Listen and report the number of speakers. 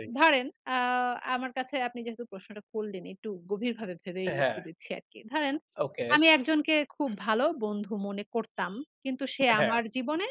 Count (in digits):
2